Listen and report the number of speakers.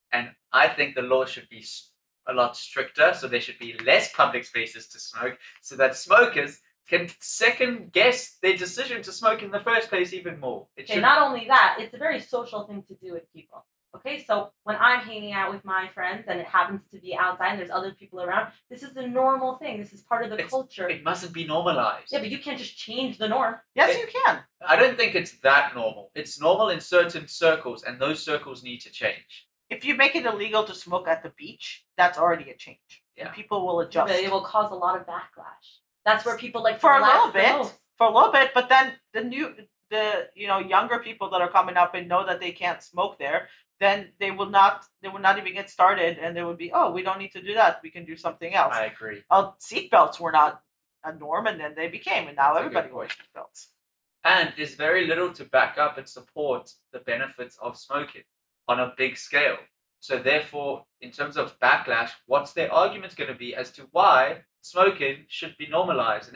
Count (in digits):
3